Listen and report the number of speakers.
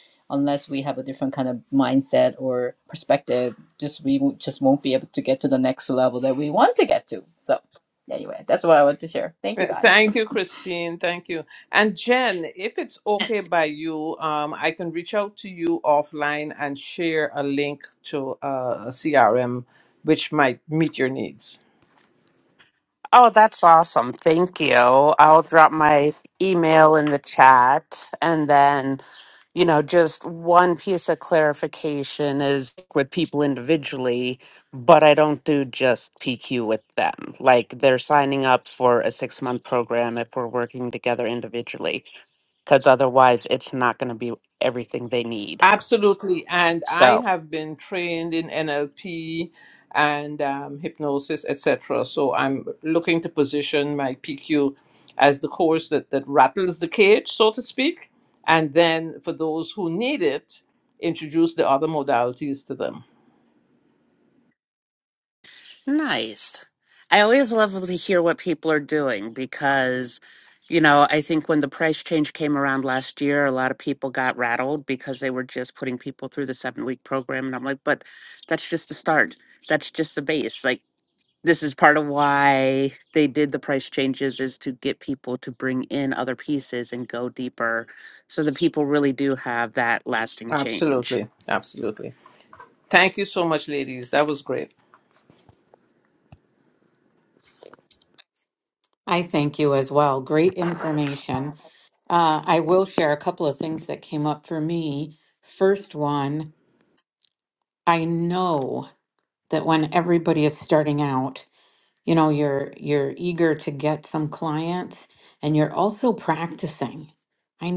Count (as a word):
four